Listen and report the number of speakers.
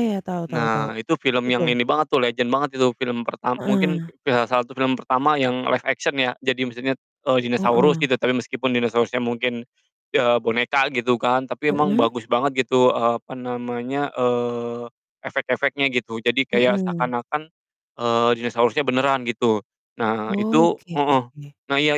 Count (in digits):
2